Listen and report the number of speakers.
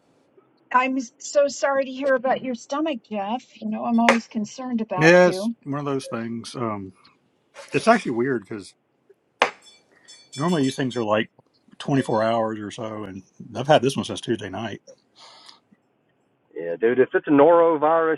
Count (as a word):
three